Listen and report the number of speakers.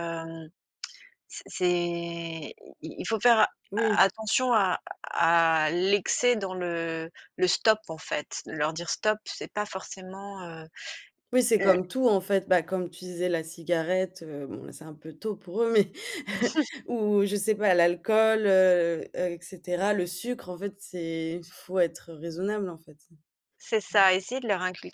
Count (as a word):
two